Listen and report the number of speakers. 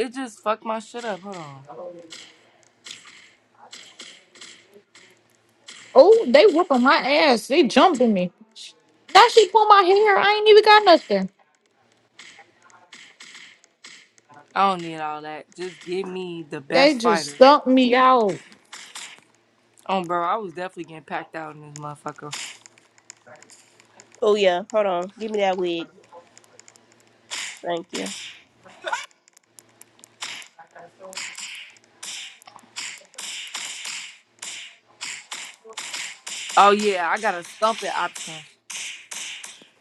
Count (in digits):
3